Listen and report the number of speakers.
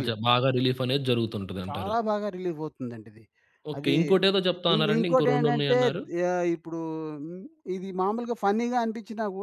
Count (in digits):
2